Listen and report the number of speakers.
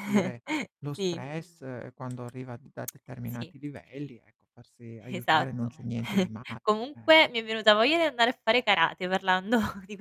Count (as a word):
two